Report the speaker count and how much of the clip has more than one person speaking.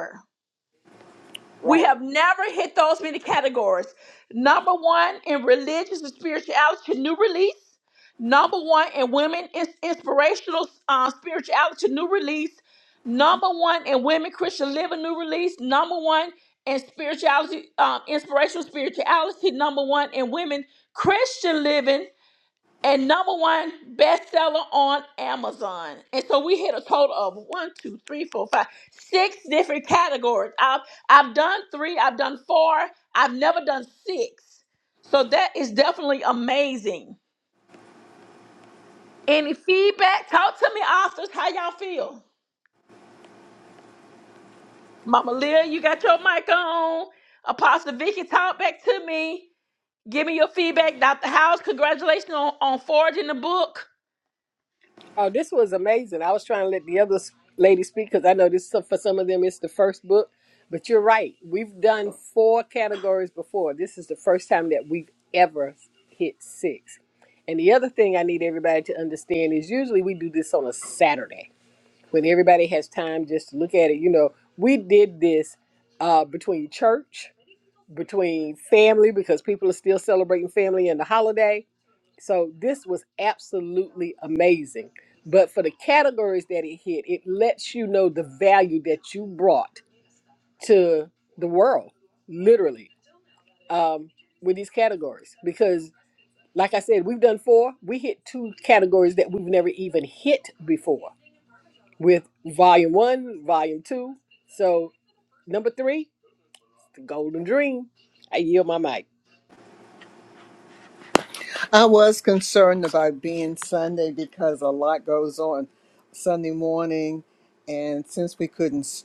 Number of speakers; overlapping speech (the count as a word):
three, under 1%